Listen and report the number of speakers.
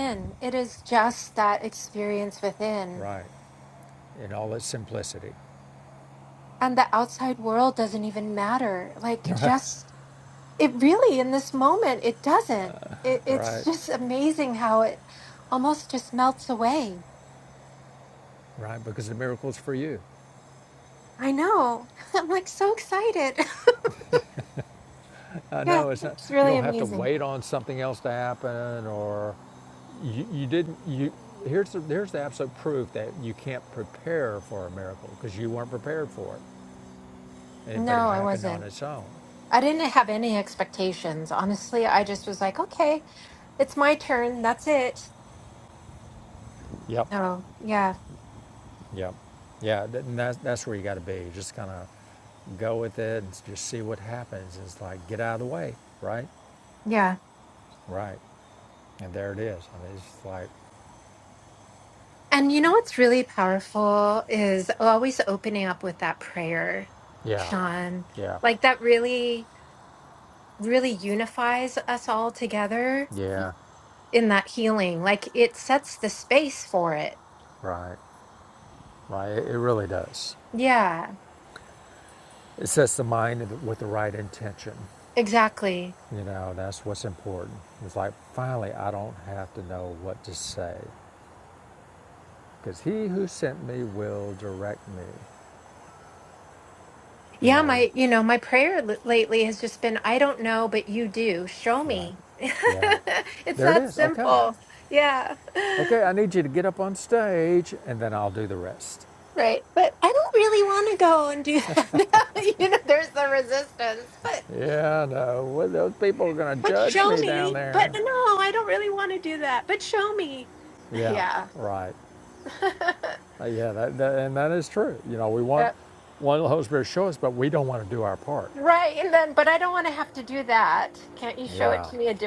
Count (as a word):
two